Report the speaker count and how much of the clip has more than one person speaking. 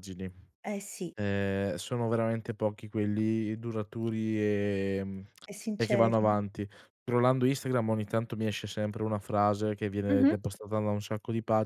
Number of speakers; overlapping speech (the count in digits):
2, about 7%